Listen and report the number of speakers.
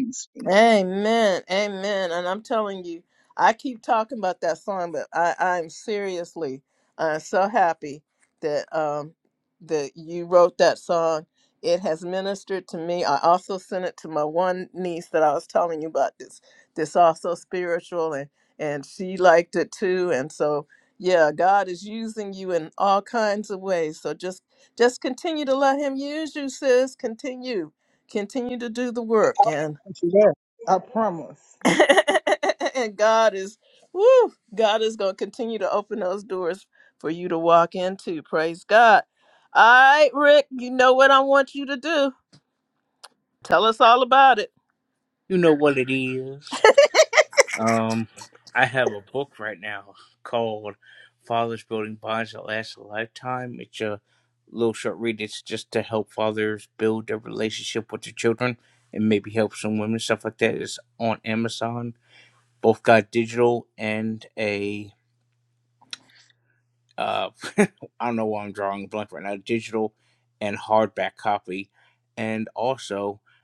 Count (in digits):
3